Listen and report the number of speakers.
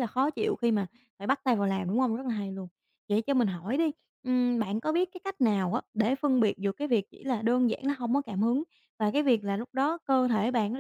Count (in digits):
1